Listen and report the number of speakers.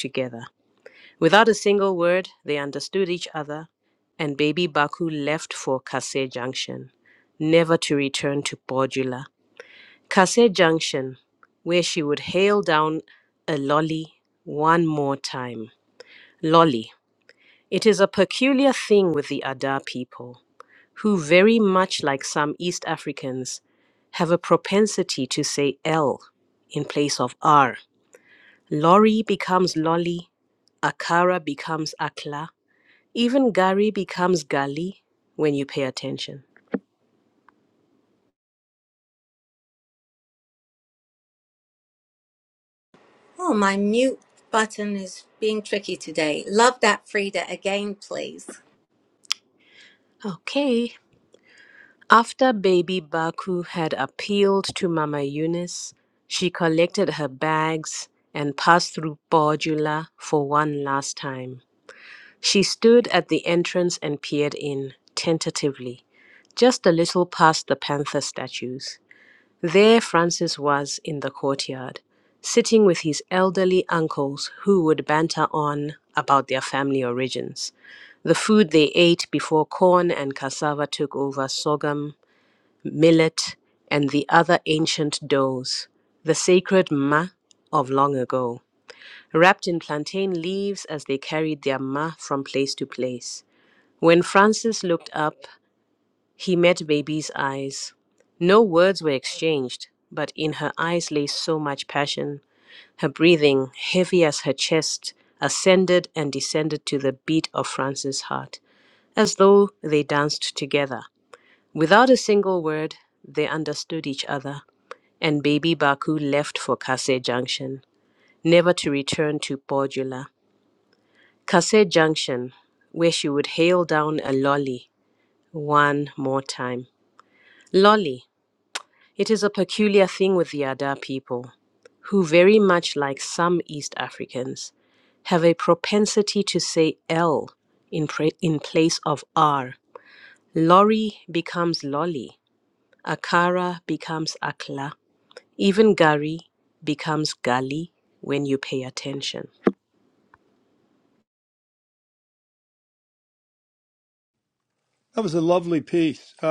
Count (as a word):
three